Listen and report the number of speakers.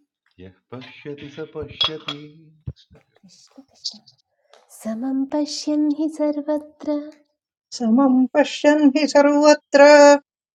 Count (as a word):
three